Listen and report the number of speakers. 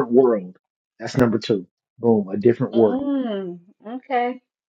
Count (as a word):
two